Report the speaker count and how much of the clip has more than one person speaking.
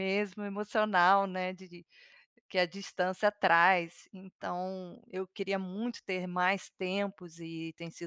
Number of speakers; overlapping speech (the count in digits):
1, no overlap